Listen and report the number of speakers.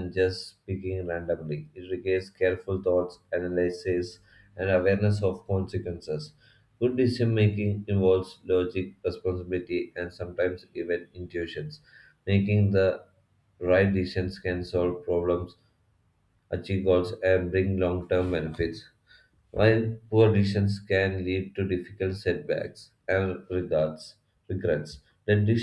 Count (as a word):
one